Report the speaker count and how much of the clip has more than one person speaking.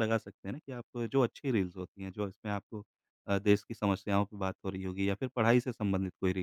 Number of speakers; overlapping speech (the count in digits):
1, no overlap